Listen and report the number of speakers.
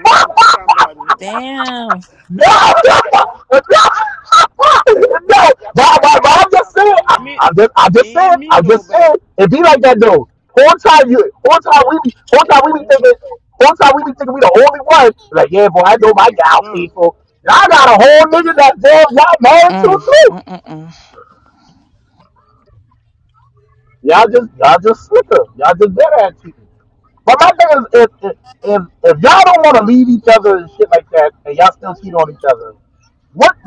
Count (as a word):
three